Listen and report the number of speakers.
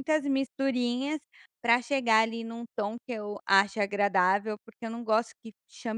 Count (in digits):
1